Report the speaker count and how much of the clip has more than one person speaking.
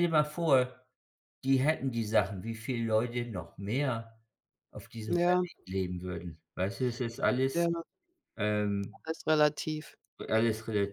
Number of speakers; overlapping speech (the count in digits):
2, about 4%